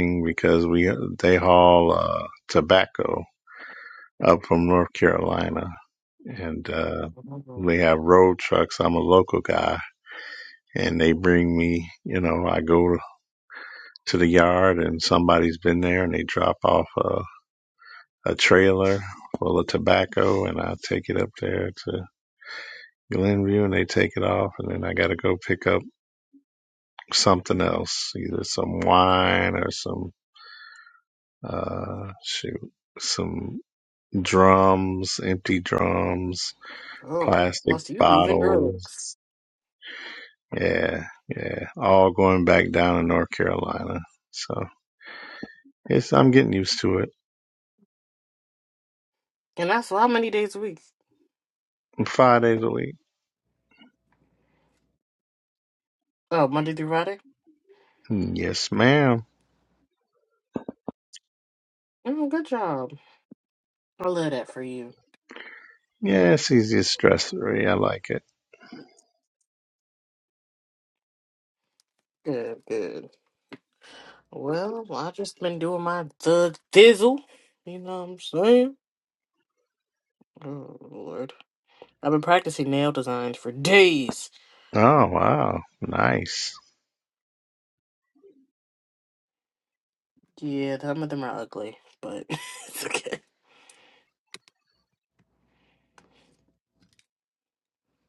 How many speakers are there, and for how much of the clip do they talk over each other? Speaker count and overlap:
2, about 2%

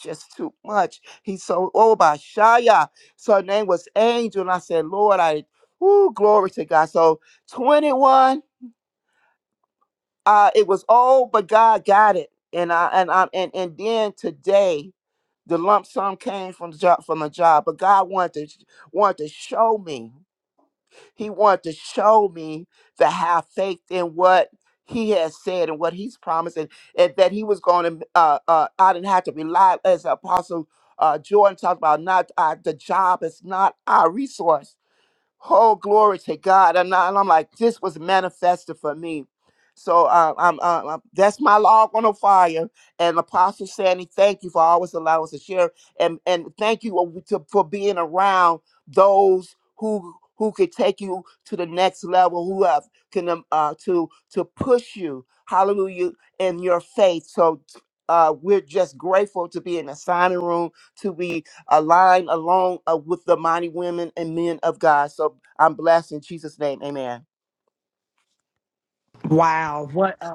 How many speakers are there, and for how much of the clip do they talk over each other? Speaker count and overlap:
2, no overlap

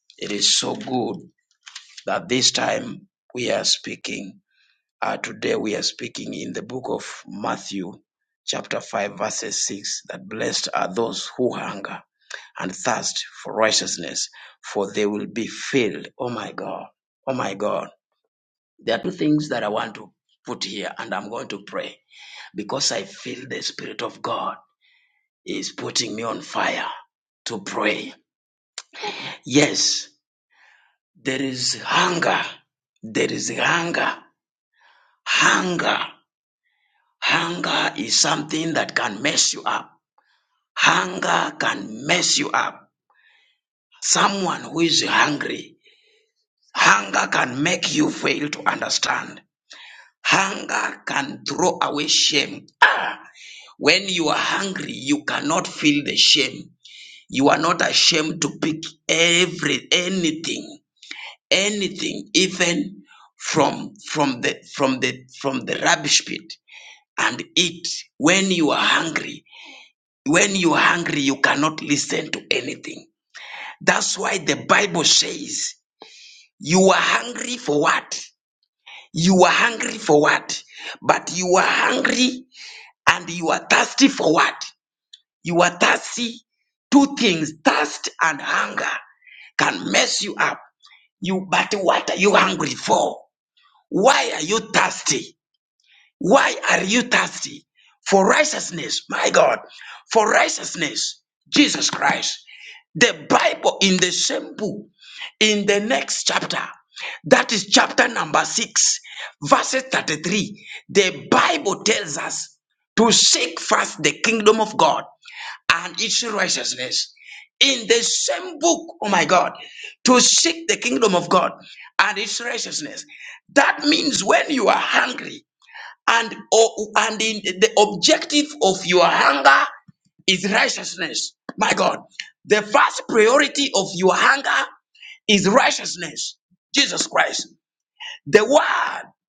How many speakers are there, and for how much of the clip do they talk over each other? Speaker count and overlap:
1, no overlap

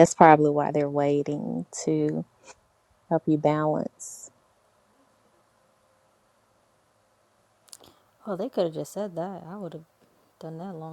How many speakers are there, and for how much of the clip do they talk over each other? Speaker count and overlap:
2, no overlap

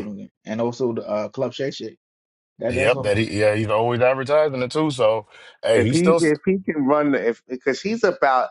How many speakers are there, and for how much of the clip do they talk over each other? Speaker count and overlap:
3, about 12%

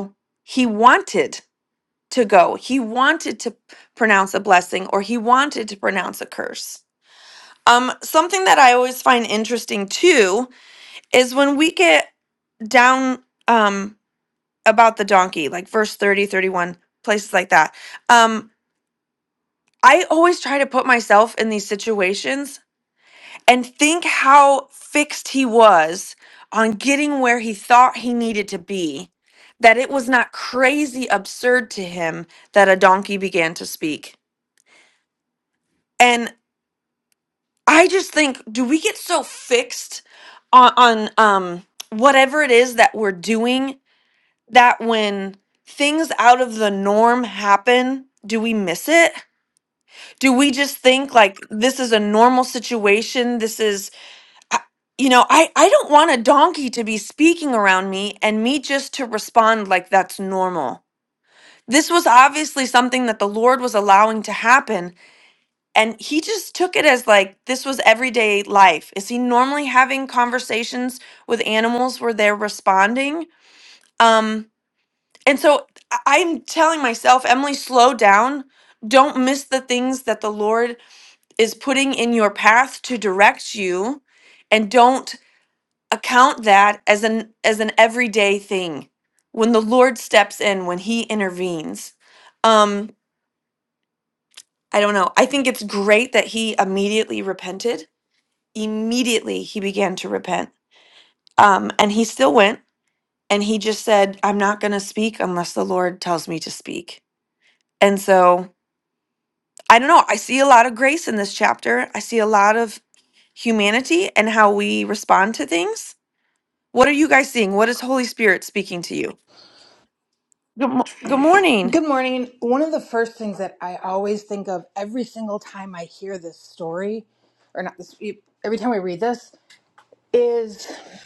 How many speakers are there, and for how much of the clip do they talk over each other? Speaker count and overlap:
2, under 1%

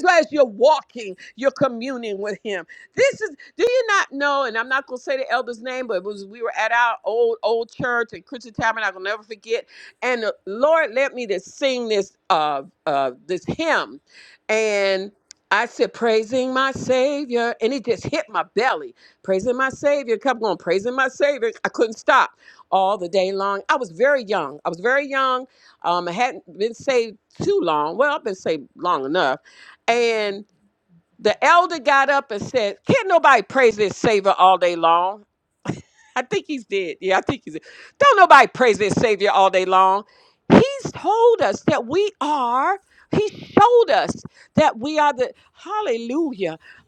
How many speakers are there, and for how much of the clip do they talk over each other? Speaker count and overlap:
1, no overlap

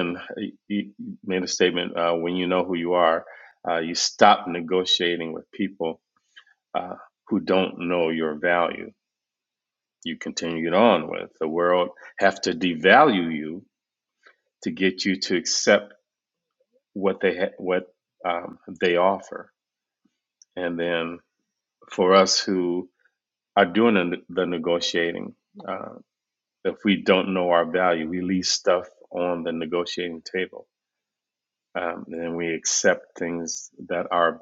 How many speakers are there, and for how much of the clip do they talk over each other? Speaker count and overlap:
1, no overlap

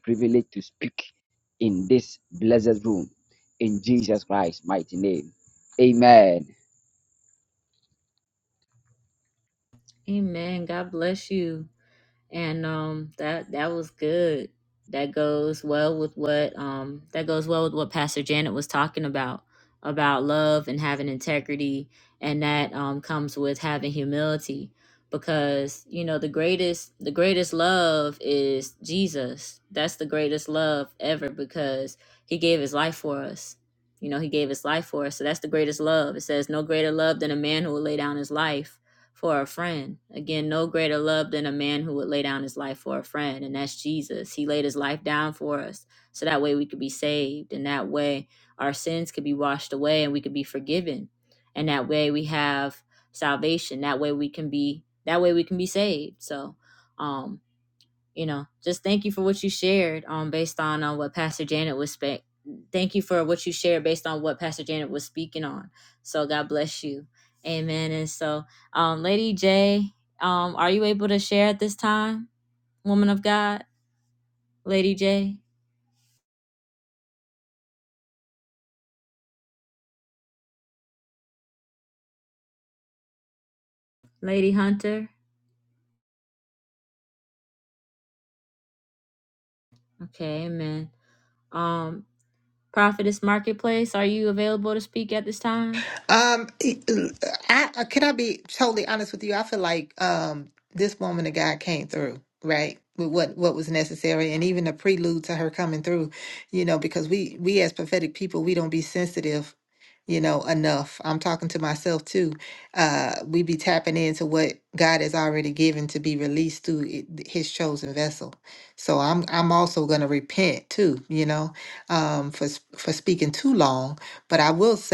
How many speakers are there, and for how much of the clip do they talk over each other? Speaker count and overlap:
3, no overlap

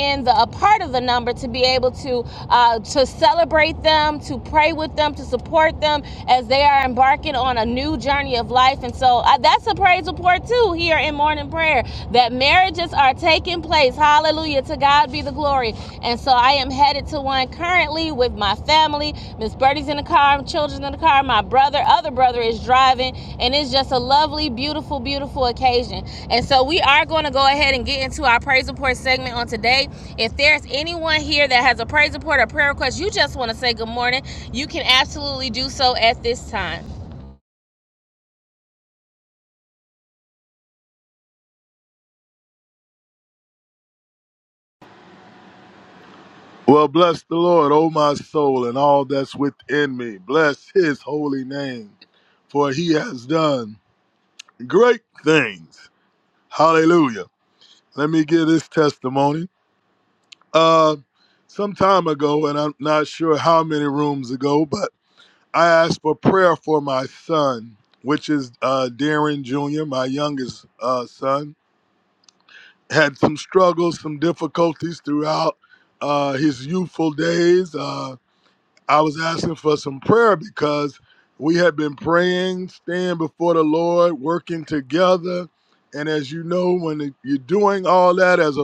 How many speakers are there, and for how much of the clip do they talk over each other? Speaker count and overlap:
2, no overlap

